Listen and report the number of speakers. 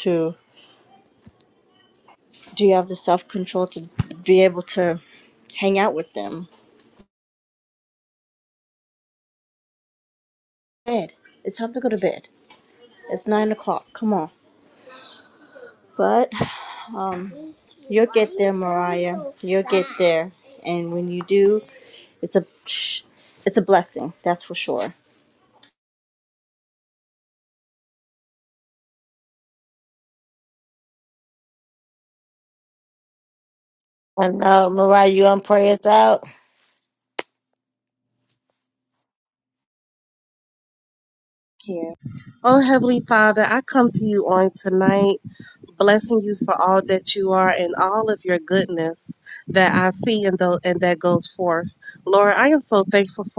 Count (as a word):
three